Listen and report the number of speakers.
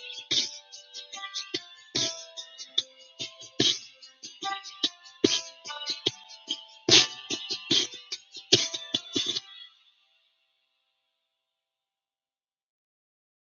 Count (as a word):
zero